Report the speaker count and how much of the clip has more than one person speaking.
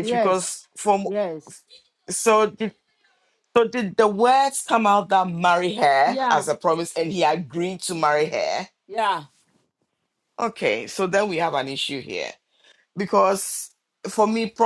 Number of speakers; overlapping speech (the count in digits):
2, about 5%